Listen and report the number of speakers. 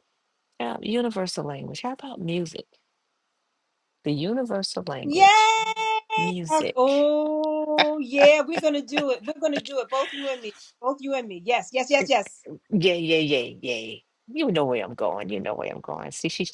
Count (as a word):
two